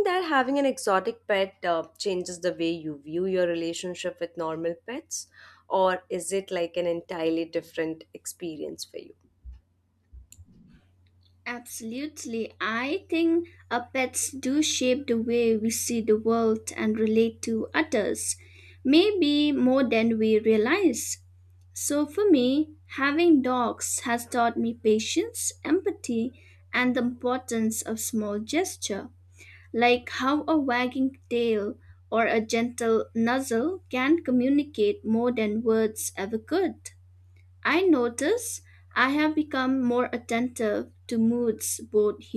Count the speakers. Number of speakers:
two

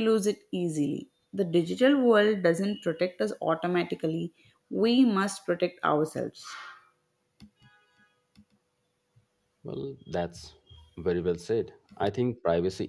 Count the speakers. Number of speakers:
two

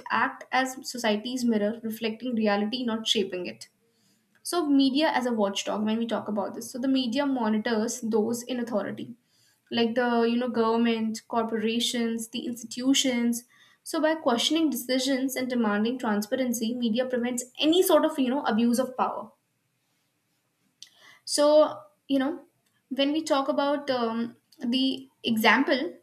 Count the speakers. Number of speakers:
one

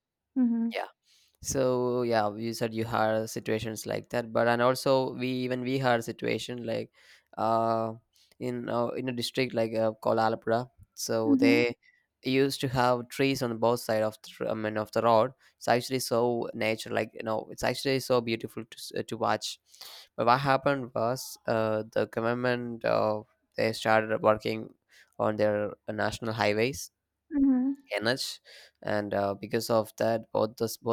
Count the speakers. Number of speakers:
two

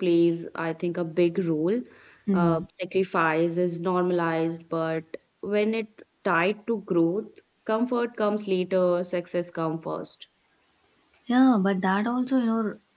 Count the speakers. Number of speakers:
two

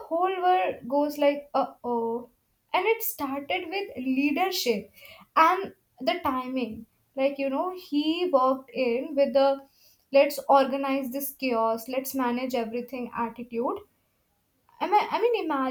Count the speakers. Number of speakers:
one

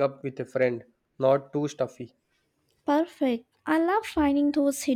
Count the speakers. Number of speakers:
two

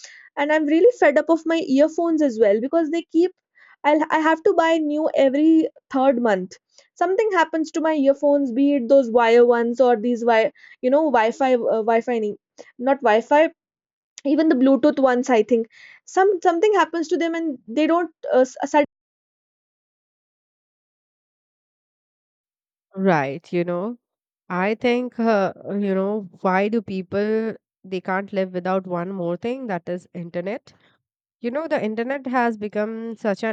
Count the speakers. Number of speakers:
two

